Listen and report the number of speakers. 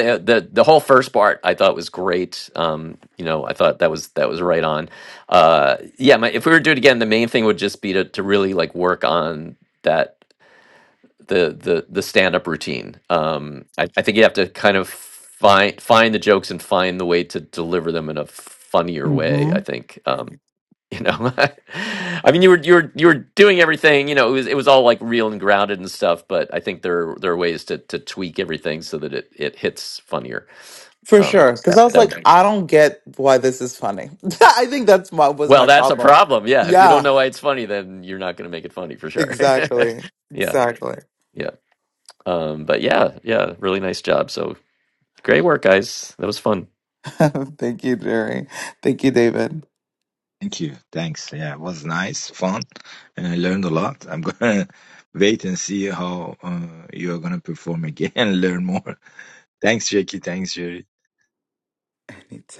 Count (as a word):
three